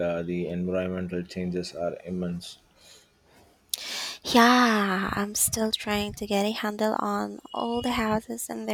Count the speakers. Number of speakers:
two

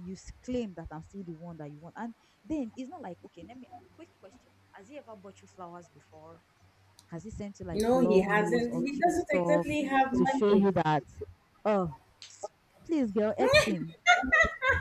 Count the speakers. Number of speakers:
two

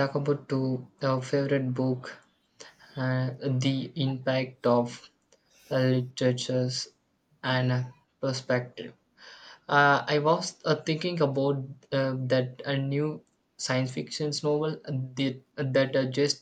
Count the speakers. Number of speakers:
one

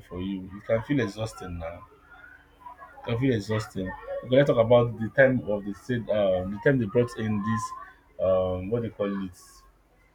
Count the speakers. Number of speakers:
one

